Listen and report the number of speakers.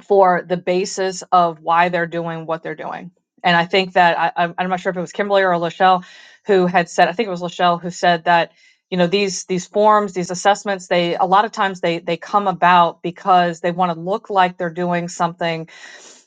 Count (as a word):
one